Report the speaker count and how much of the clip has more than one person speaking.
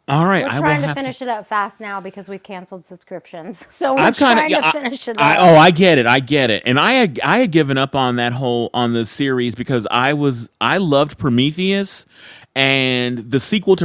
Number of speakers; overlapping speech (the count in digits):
2, about 14%